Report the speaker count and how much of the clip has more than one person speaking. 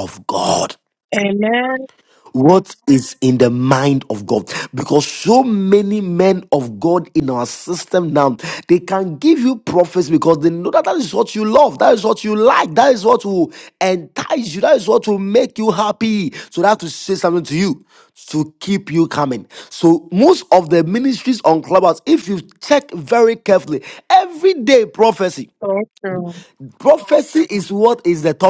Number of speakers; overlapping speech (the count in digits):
2, no overlap